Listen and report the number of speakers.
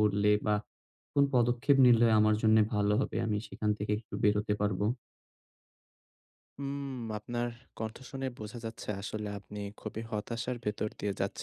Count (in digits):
2